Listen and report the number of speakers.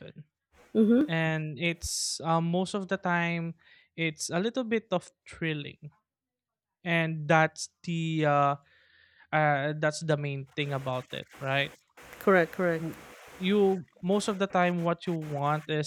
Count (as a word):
two